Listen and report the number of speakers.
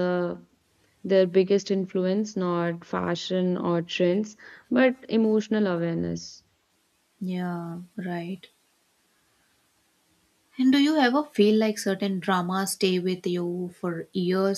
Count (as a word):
two